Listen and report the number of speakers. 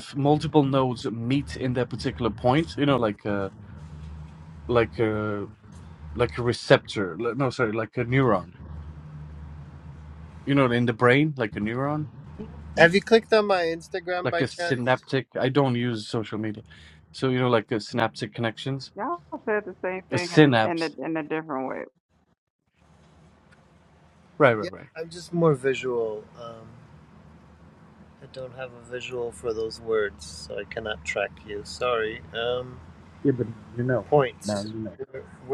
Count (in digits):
3